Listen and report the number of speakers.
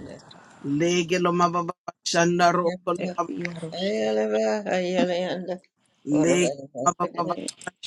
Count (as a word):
three